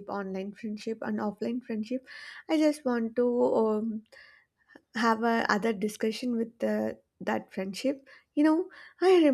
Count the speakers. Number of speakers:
1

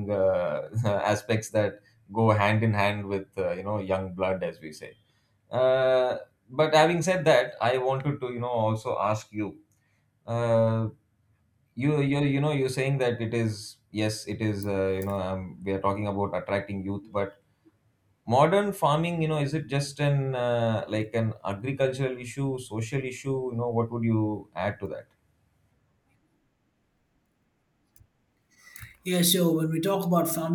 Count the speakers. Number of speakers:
2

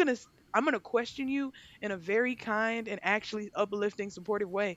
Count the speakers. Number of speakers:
1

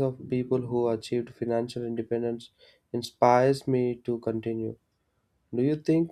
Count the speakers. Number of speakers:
1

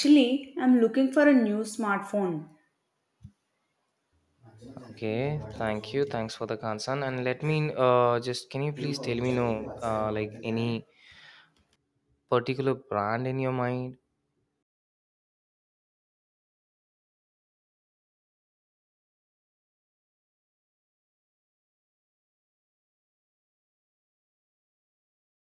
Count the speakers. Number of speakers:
2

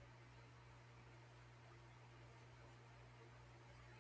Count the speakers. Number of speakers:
0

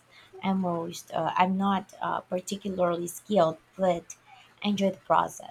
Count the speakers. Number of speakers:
1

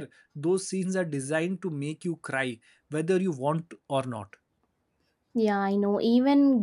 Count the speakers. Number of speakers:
2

